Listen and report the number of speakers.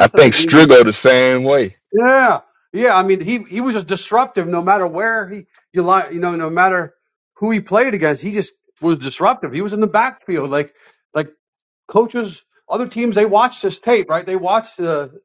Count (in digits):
2